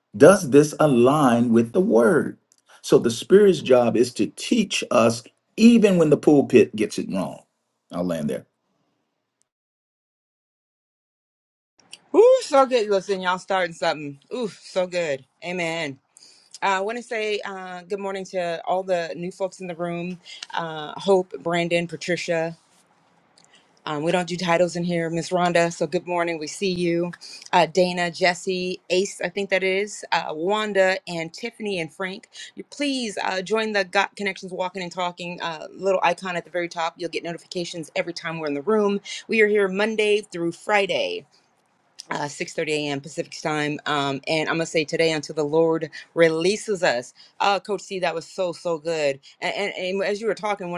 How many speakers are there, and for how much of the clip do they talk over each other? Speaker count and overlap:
2, no overlap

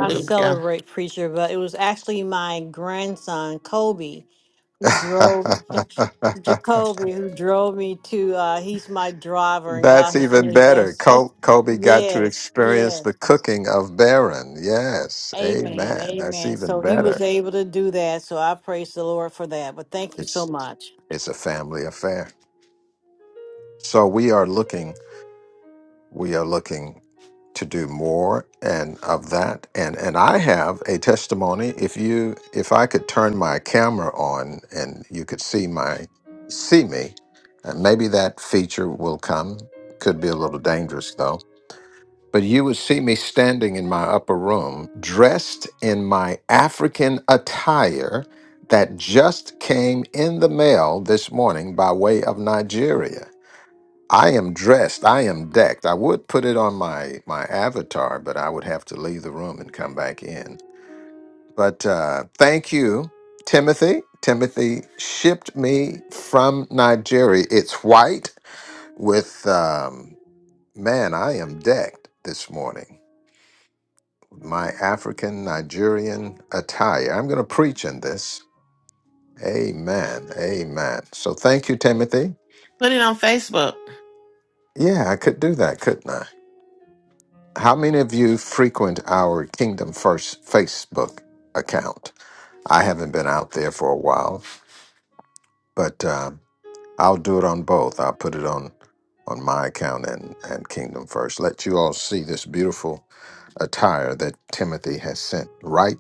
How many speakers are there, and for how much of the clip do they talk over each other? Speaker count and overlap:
3, about 5%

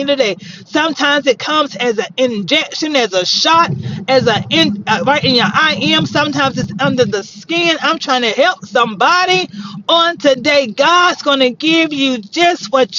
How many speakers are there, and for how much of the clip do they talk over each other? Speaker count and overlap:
1, no overlap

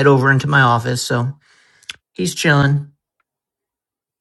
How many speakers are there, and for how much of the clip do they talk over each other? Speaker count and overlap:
1, no overlap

